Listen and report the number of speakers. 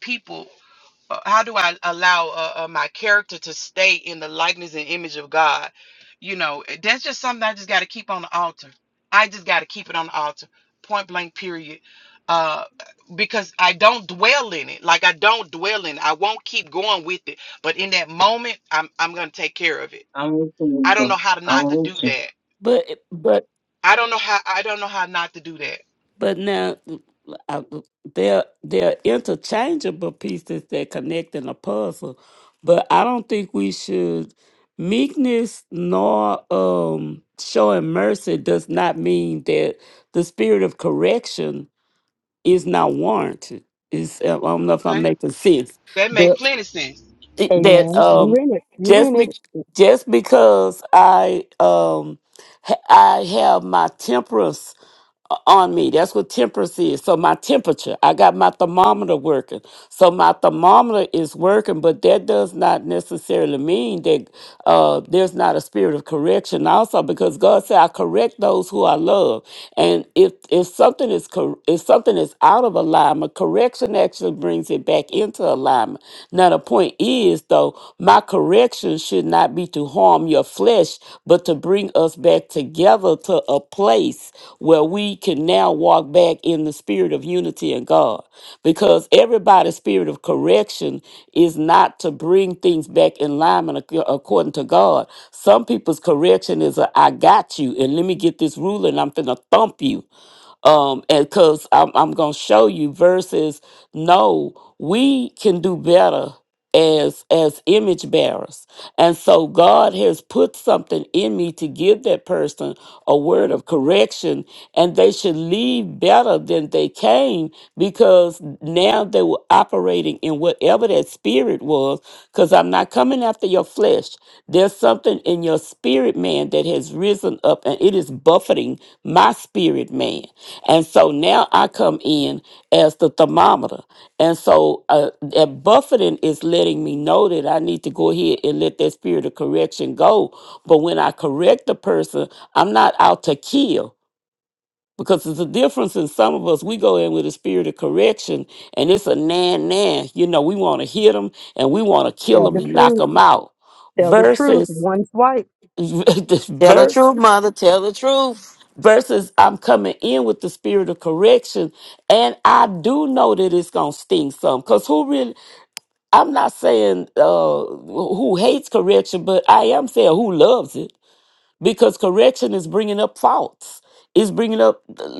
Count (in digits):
5